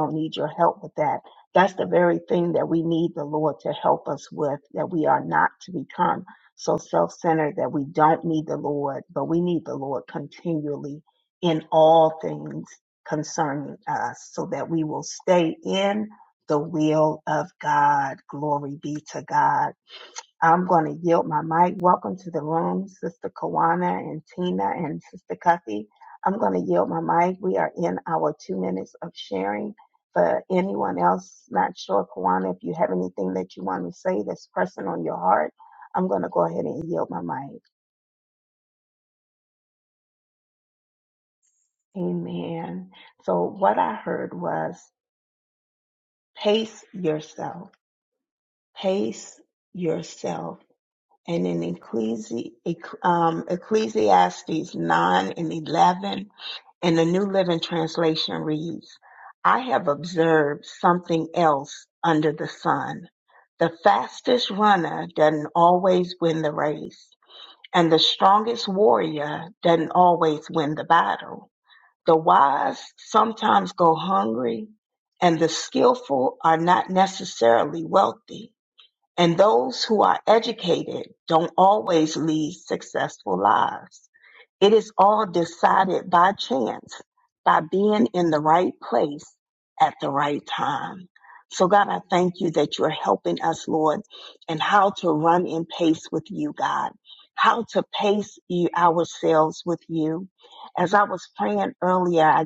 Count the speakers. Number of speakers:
1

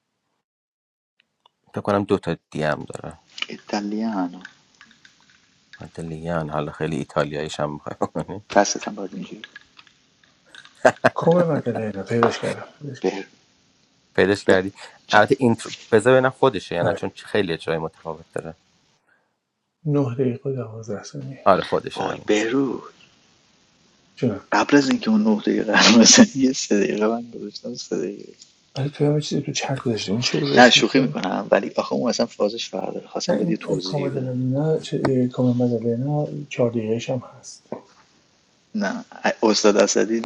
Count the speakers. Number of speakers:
3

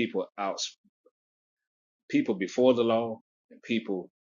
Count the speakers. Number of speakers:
1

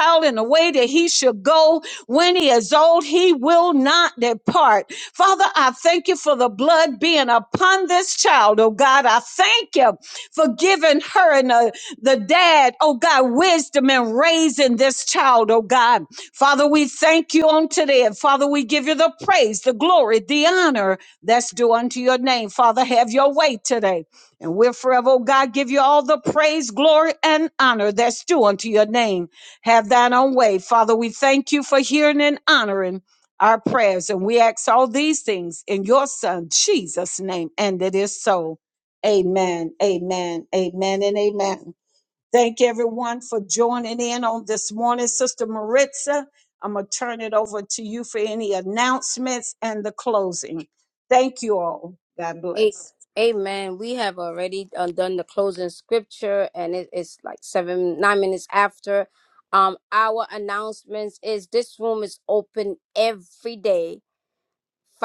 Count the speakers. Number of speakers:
2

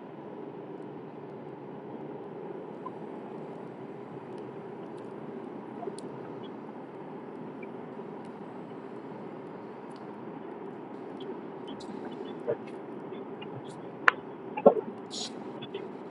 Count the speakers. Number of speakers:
0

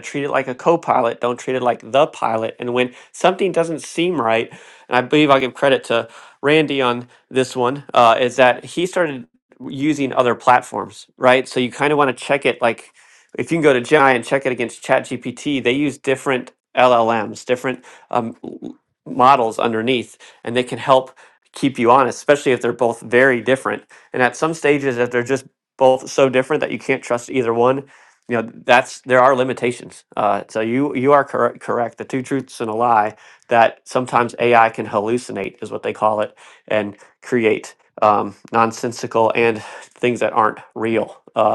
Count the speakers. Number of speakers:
1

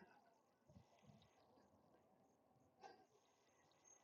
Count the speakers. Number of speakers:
0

